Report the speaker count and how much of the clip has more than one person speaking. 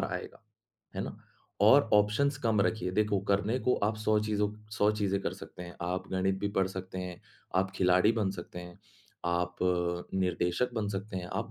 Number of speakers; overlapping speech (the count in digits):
1, no overlap